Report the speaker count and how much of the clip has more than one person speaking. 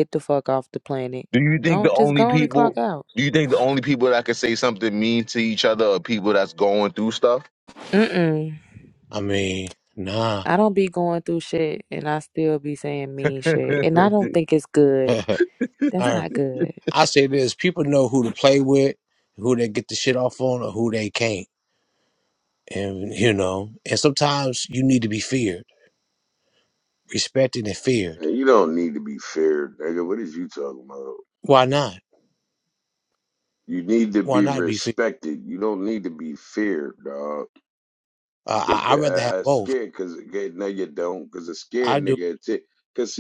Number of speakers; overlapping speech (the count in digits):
4, about 8%